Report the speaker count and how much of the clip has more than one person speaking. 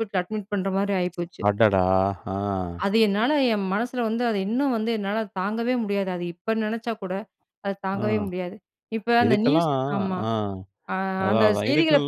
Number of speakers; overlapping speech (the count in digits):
2, about 17%